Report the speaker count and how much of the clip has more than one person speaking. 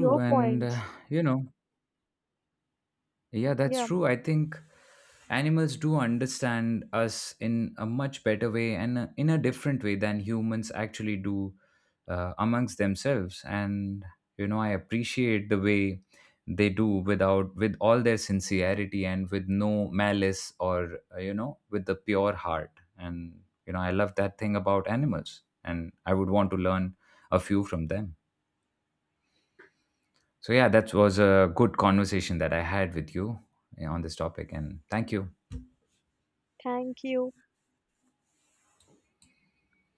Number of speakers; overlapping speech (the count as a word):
two, about 2%